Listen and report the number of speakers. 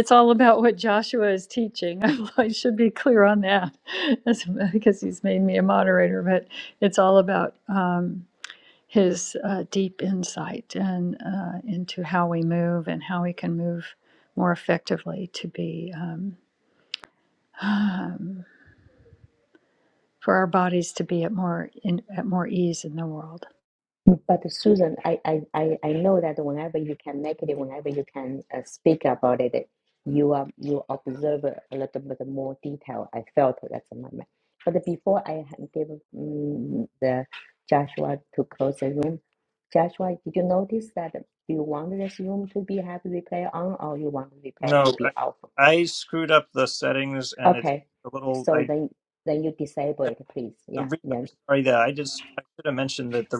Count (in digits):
3